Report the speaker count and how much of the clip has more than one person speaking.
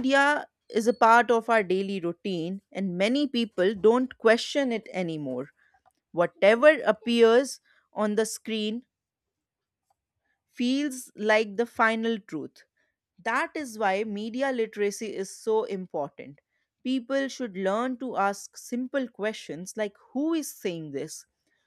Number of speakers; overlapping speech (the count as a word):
one, no overlap